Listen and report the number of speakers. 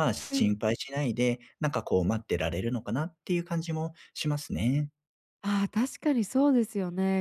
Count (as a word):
two